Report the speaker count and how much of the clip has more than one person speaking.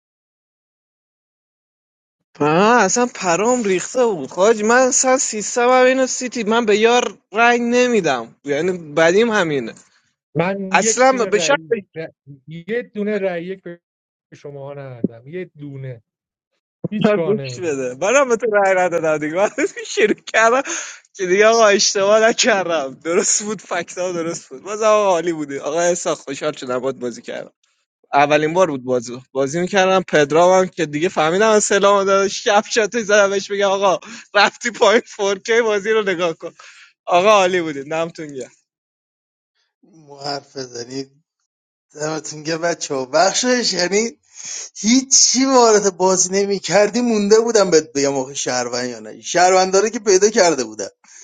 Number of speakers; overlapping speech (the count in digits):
3, about 3%